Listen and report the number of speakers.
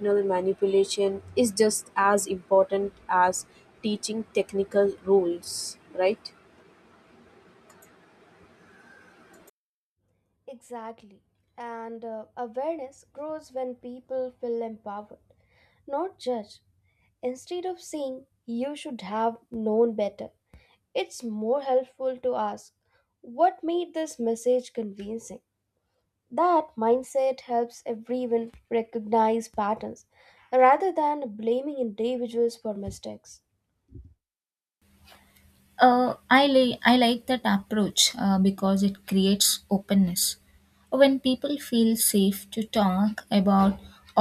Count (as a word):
three